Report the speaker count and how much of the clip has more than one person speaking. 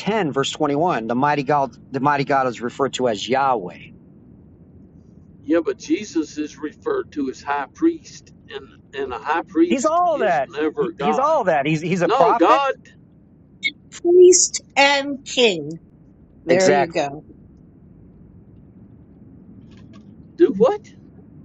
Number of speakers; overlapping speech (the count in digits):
3, about 9%